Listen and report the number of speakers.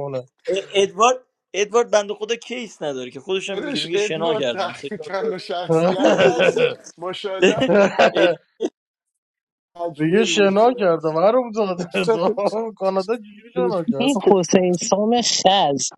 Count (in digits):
4